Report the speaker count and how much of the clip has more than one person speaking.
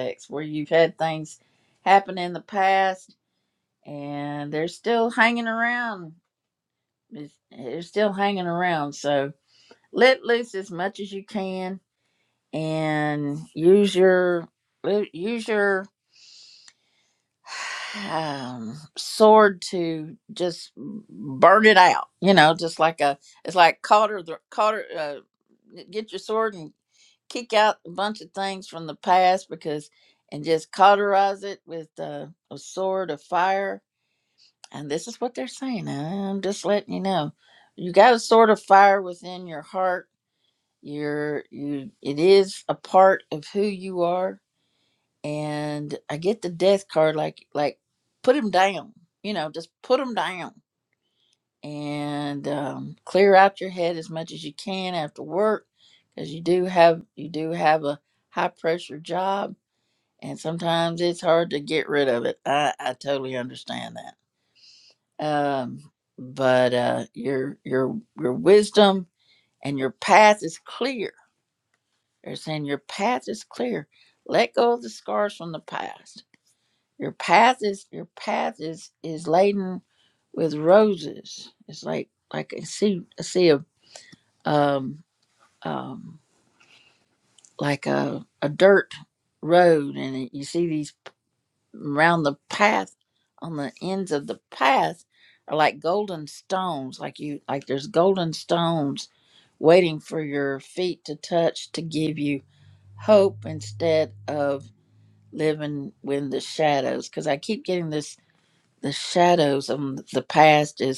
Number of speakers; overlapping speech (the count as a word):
one, no overlap